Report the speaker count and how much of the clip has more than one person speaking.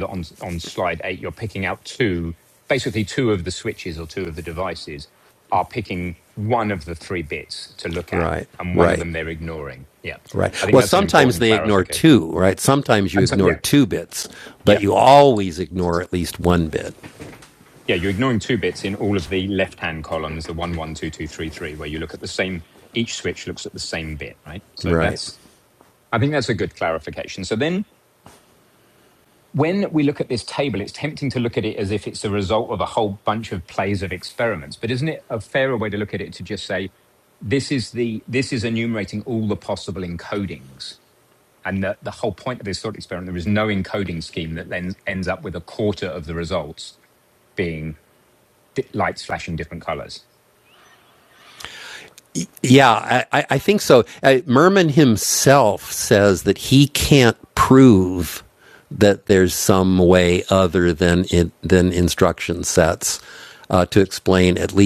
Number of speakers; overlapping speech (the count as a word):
two, about 5%